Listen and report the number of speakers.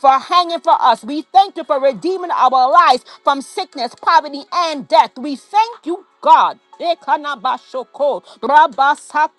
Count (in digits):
1